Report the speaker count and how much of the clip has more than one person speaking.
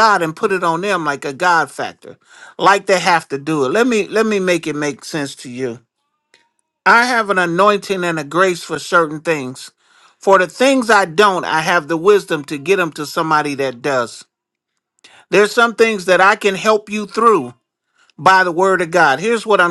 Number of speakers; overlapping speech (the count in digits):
1, no overlap